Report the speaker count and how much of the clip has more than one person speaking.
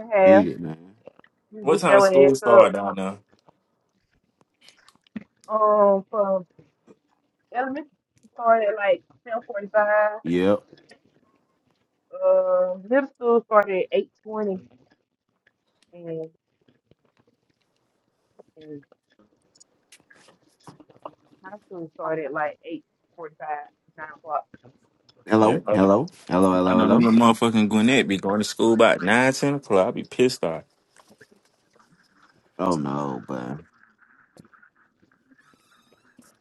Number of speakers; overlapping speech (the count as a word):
three, about 6%